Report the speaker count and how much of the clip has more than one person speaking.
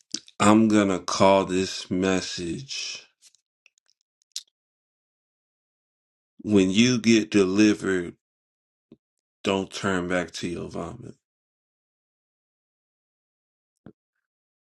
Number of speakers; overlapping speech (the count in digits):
1, no overlap